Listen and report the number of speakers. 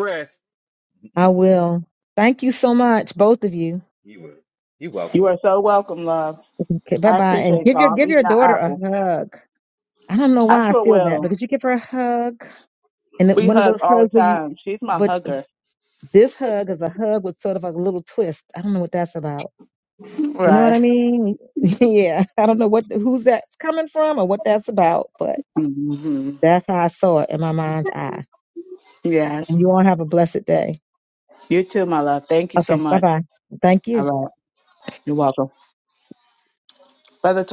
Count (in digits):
3